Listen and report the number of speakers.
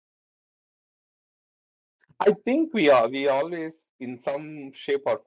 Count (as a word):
one